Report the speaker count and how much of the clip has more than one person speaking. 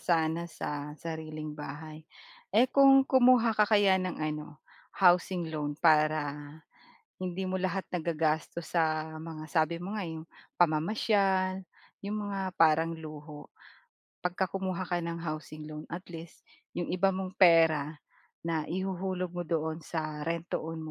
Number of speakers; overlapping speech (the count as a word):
one, no overlap